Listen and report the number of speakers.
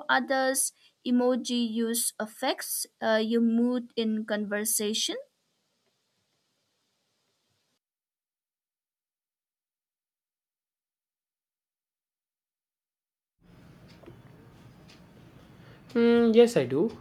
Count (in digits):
2